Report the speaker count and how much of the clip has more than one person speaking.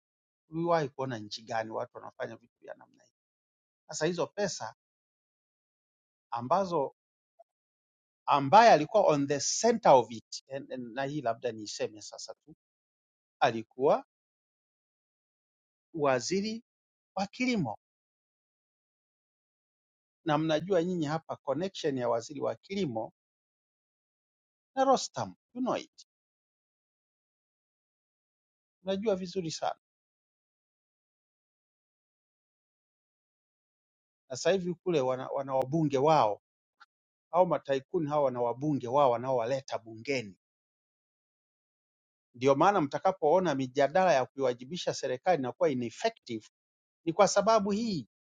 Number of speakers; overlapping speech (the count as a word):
one, no overlap